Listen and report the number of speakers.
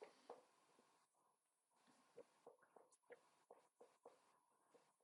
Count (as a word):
zero